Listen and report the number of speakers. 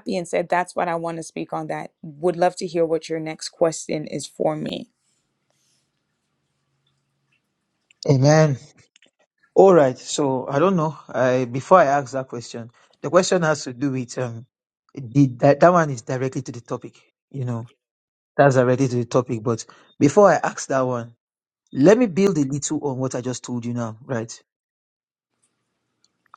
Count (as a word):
two